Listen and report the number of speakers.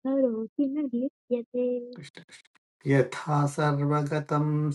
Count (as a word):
two